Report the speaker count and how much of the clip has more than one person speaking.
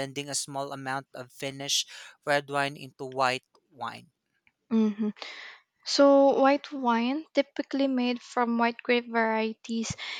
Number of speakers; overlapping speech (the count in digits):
2, no overlap